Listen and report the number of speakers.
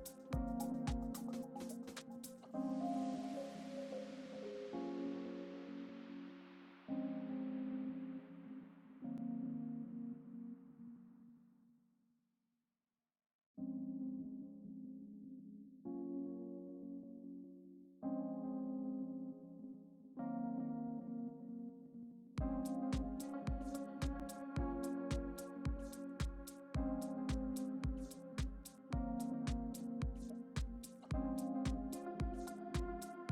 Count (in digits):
0